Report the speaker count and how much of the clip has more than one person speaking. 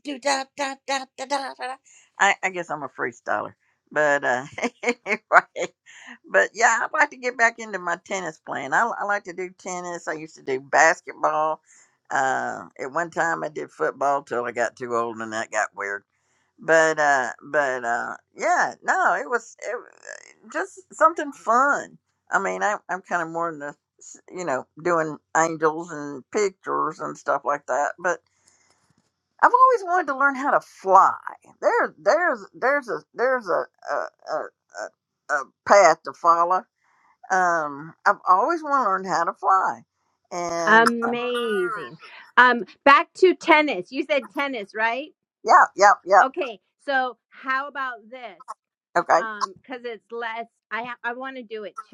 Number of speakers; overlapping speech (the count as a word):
two, about 1%